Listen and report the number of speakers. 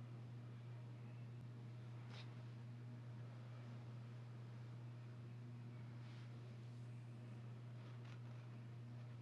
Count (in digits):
0